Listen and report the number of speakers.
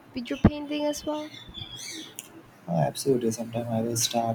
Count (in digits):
2